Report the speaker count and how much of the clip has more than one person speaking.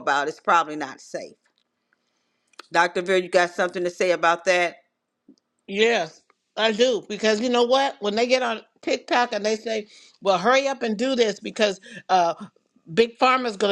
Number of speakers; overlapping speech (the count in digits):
2, no overlap